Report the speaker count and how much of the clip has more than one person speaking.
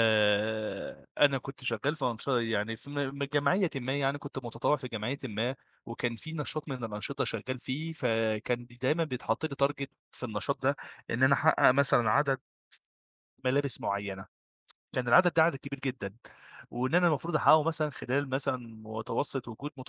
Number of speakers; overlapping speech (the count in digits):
1, no overlap